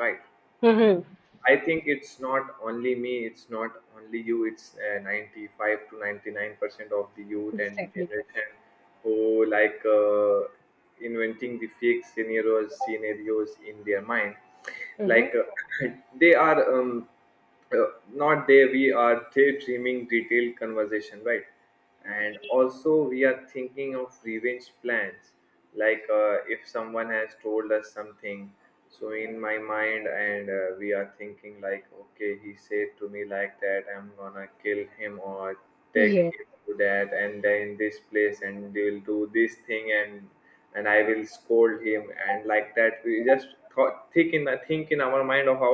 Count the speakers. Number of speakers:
2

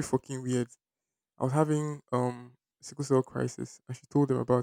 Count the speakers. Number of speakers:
1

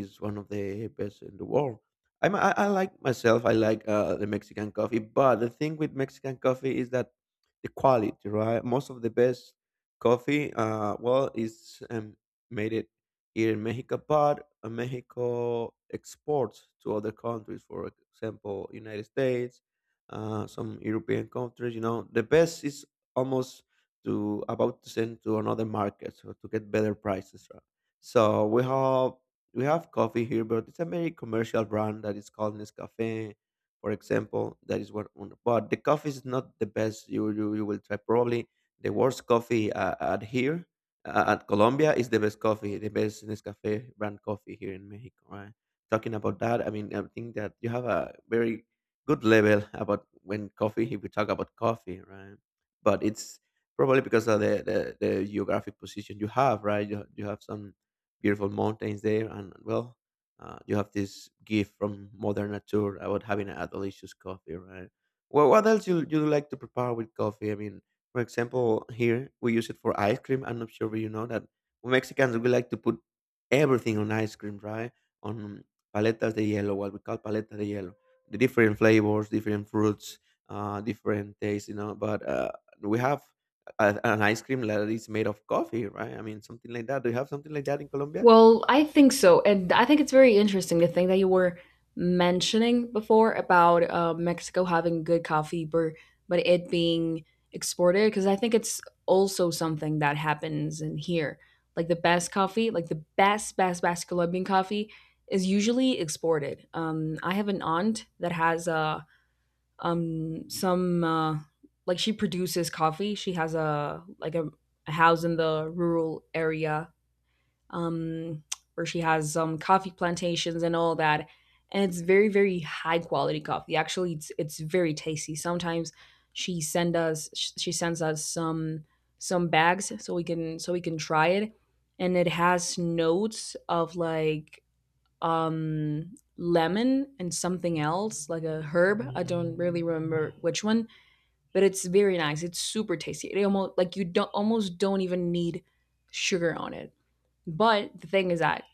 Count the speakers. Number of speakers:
2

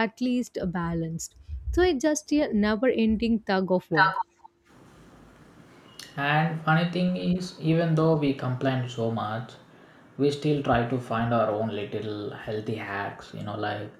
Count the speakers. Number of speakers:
2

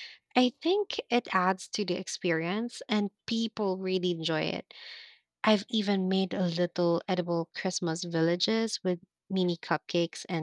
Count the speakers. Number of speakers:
1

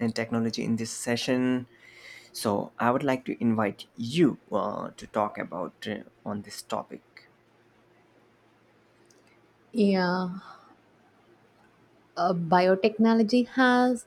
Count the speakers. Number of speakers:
2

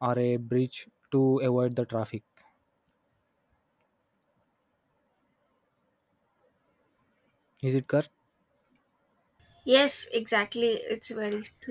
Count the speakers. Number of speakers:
2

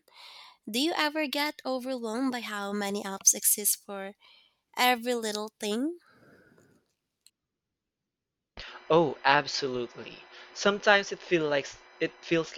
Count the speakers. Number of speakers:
2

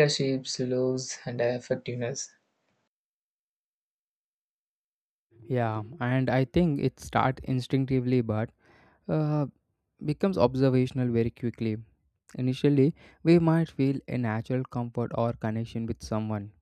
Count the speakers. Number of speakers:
2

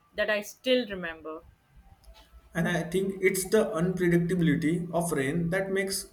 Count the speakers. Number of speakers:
2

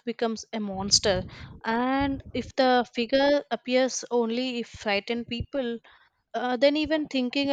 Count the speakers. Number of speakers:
1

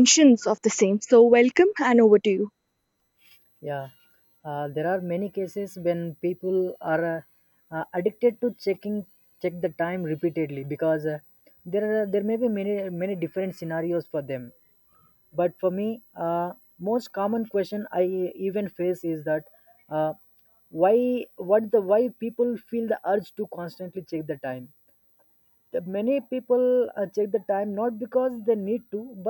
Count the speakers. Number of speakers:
2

